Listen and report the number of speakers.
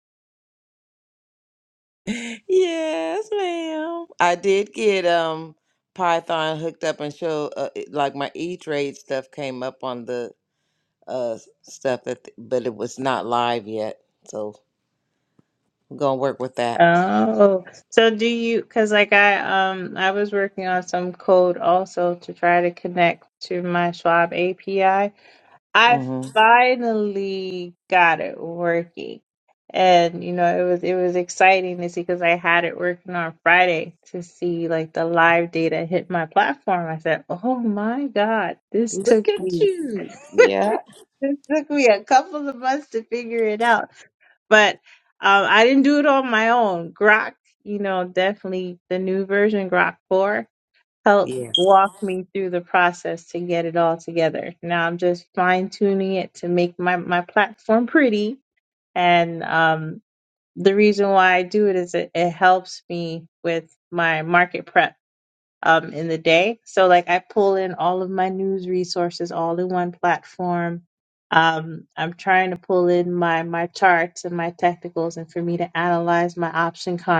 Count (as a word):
two